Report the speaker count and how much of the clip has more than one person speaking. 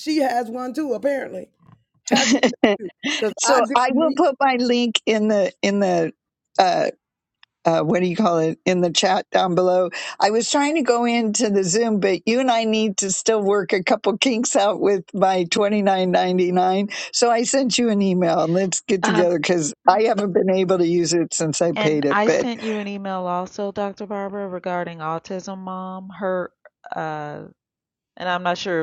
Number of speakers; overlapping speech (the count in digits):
3, about 6%